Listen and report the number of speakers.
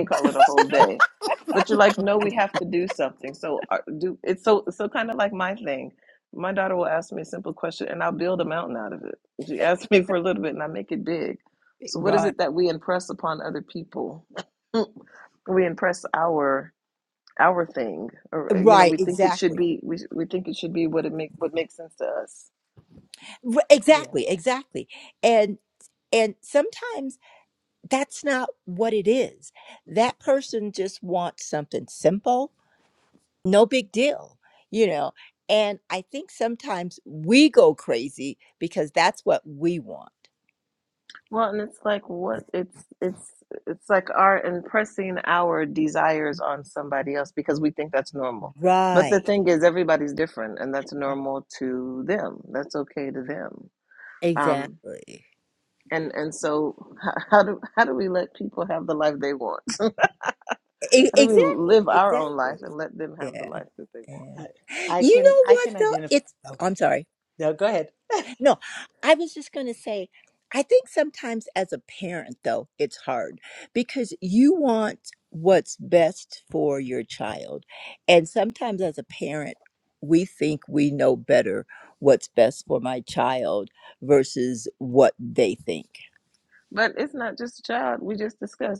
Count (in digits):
3